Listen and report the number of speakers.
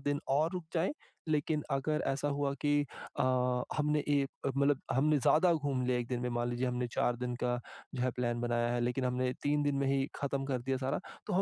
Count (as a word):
one